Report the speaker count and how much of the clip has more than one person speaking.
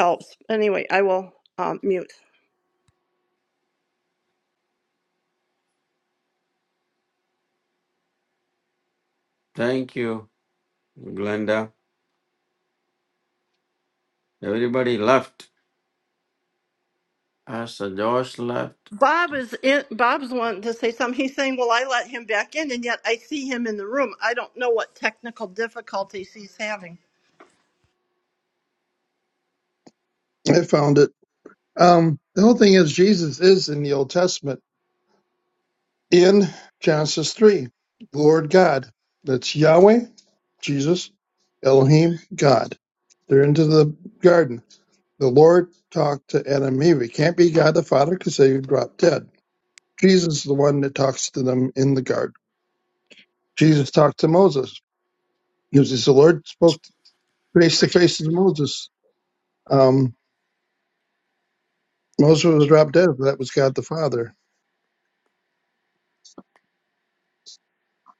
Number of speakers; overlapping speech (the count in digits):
3, no overlap